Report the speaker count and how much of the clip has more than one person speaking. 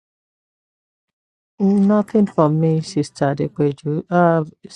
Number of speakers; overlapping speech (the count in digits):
1, no overlap